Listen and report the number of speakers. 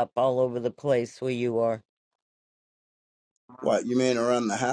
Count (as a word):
two